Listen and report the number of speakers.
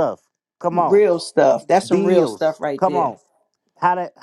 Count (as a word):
two